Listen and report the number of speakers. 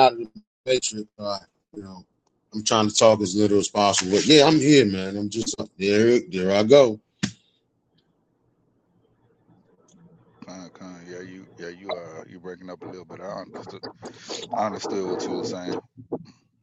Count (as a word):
two